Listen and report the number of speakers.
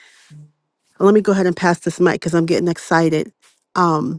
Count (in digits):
1